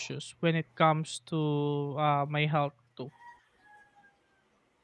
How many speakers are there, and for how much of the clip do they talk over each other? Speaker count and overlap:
1, no overlap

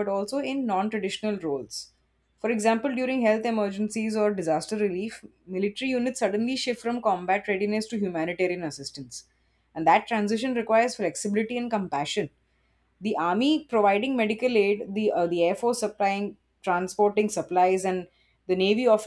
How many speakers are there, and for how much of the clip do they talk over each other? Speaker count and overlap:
1, no overlap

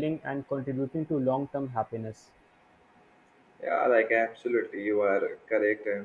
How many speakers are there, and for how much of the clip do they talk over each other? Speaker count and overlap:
2, no overlap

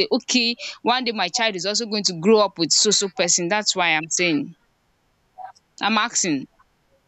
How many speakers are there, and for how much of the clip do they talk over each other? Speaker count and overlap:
1, no overlap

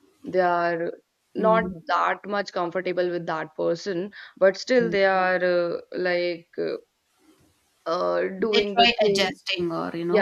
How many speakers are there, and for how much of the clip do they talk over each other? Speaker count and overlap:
2, about 16%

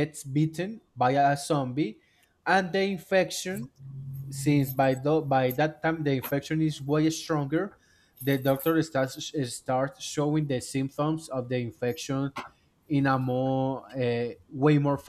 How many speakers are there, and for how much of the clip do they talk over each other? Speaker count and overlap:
1, no overlap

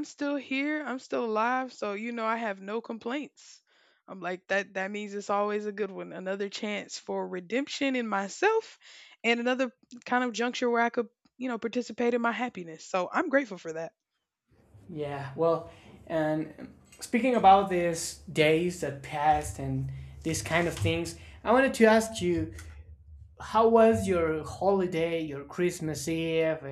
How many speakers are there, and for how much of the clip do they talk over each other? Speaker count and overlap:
2, no overlap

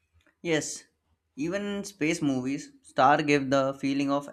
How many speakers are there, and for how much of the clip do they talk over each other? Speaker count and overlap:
1, no overlap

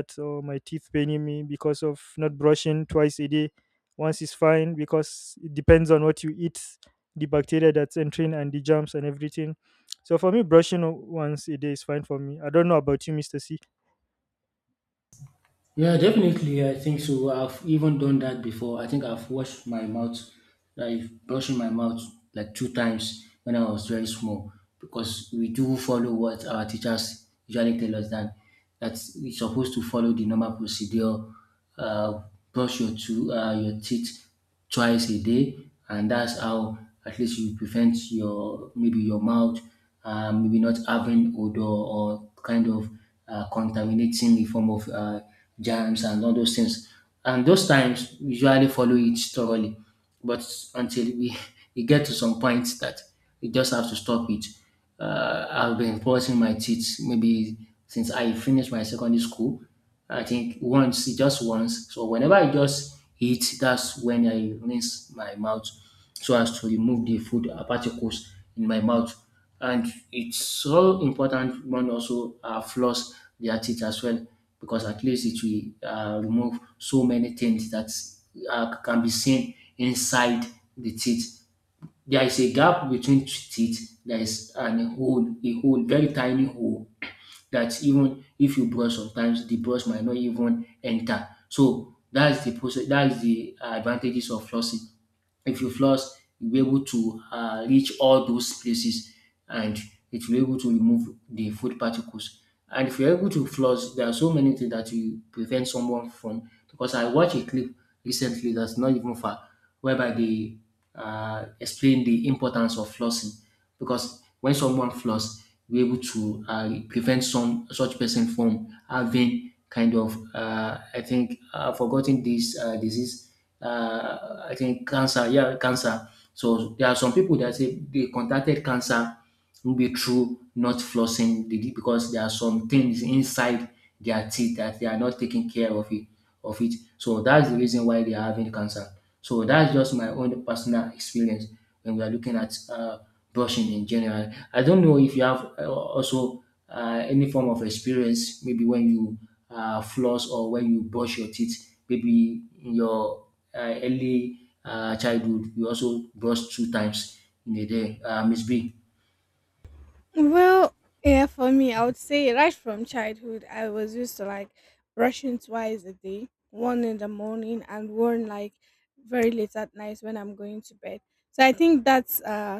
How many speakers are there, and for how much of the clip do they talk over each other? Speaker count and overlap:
3, no overlap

